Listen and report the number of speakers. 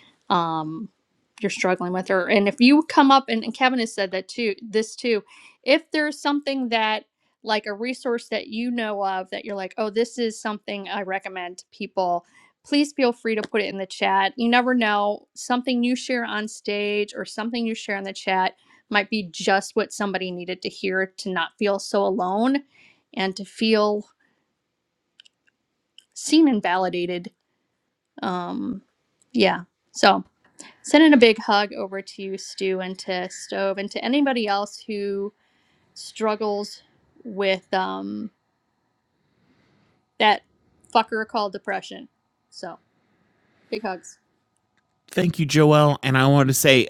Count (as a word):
two